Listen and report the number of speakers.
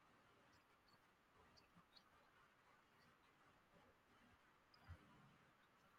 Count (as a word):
zero